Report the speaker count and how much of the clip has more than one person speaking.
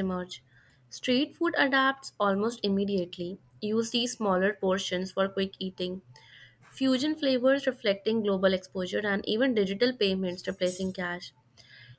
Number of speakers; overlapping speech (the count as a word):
one, no overlap